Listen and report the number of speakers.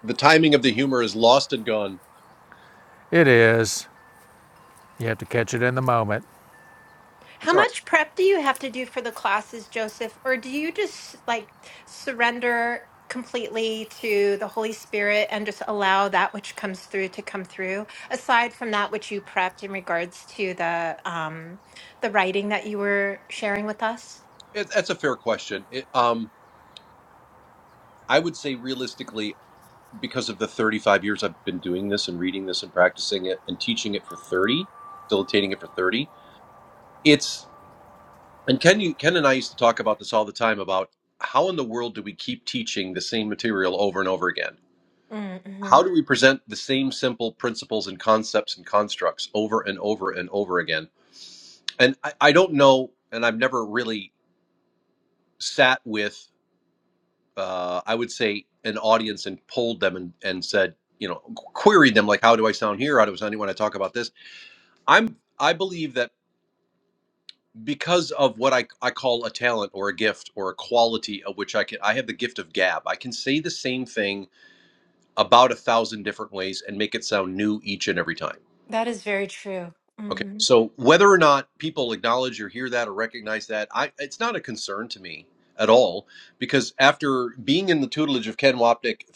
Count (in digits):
3